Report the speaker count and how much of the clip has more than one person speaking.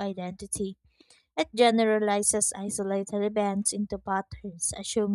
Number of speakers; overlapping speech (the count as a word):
one, no overlap